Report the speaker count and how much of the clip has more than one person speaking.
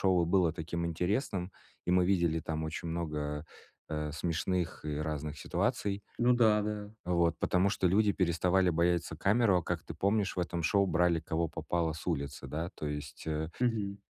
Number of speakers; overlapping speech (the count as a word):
two, no overlap